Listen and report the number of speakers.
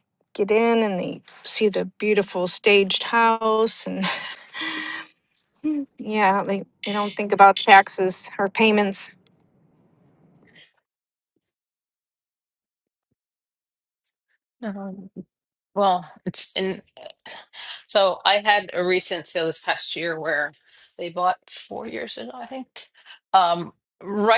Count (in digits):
2